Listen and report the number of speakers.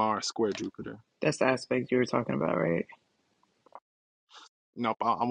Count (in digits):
2